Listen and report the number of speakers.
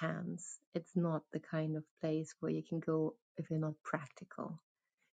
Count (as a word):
one